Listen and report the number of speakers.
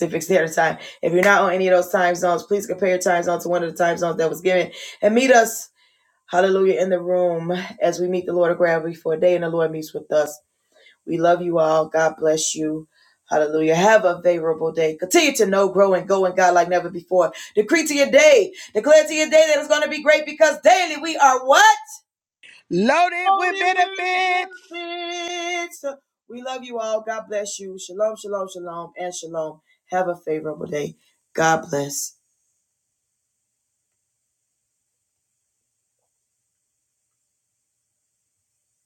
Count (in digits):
2